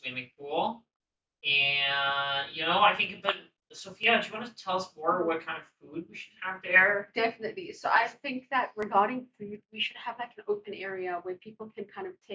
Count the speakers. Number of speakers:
2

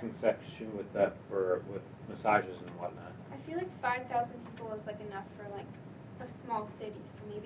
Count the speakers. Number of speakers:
2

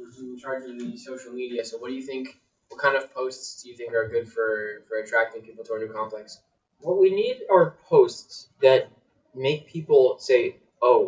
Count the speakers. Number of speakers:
2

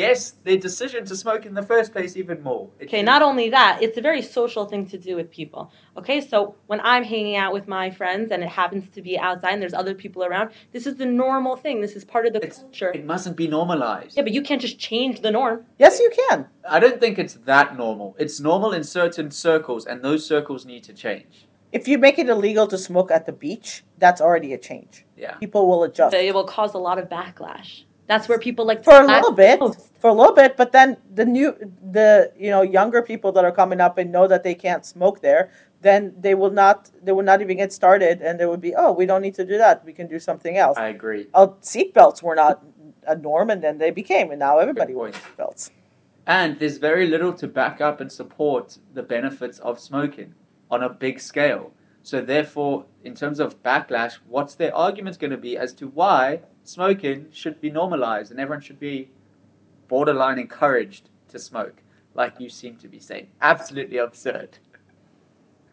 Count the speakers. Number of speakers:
3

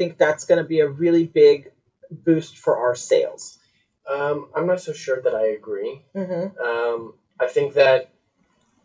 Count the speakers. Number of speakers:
2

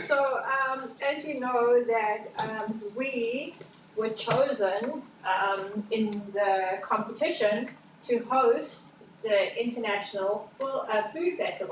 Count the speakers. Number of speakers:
1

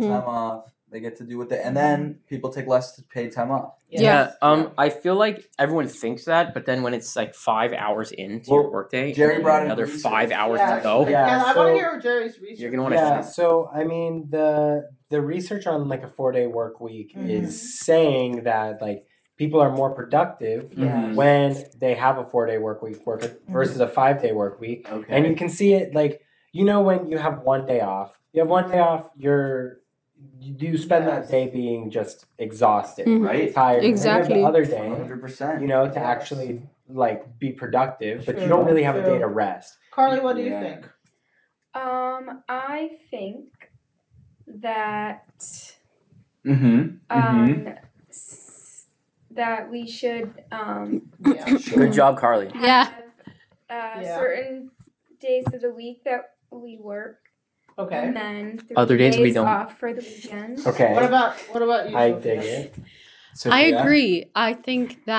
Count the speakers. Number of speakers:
6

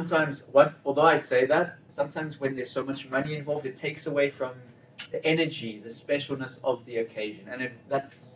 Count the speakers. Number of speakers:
1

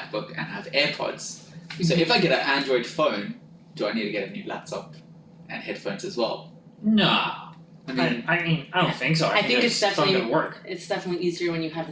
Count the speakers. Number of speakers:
3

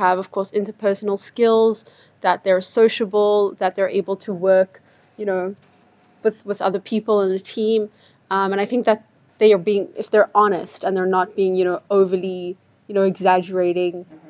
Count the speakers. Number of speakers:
1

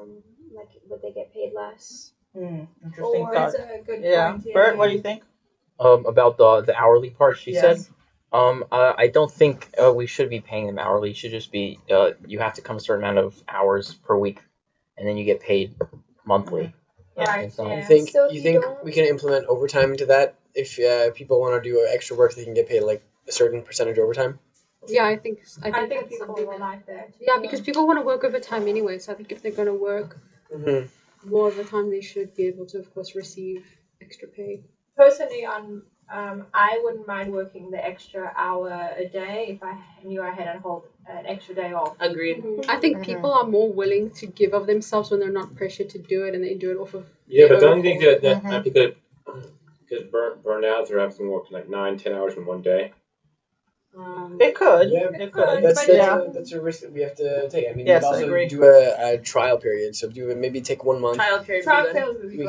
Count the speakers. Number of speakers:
8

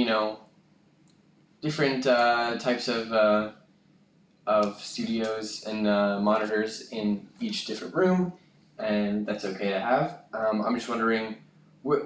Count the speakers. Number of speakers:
1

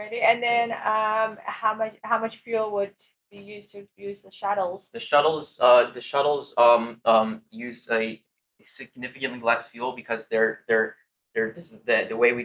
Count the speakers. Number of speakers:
2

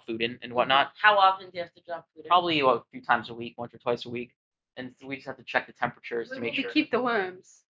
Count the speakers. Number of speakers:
3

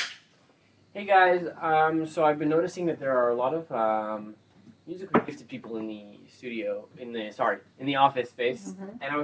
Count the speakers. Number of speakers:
1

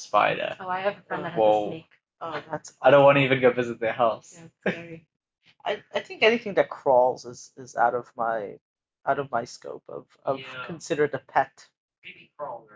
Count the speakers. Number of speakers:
4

